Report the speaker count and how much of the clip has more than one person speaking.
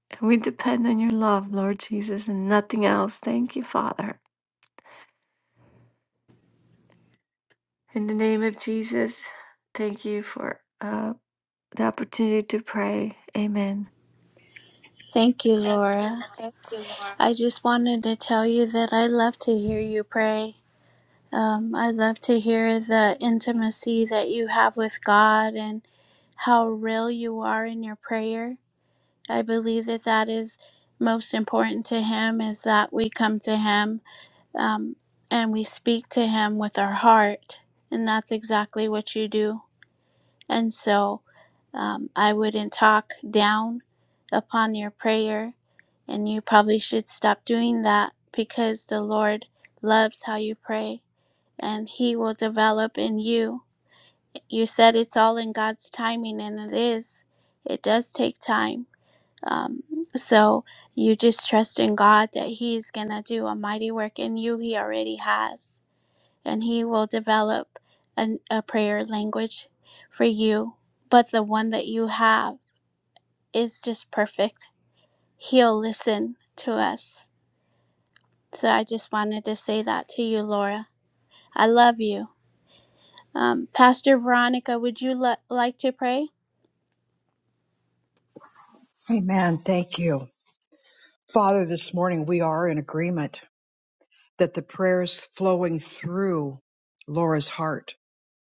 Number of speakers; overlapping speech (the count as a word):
three, no overlap